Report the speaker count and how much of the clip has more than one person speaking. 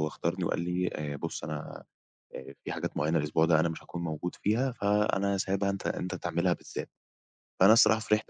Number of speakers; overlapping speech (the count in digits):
1, no overlap